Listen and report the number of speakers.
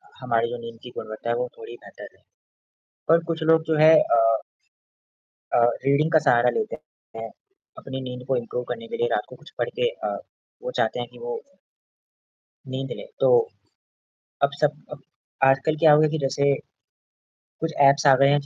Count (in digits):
1